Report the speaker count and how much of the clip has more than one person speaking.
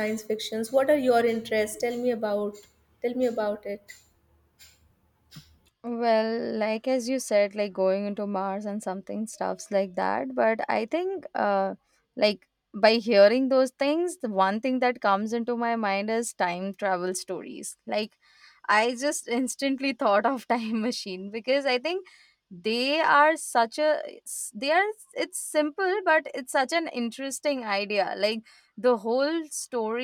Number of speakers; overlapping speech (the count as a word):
two, no overlap